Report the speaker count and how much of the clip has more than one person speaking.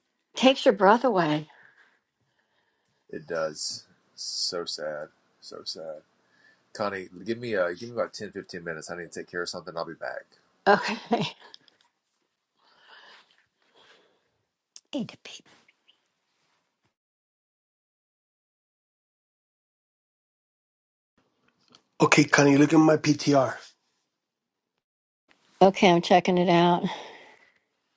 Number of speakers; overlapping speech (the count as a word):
three, no overlap